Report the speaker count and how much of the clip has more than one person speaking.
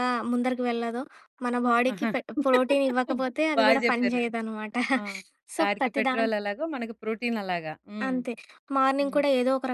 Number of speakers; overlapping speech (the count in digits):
2, about 20%